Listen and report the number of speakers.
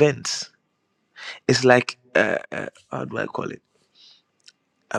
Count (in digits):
1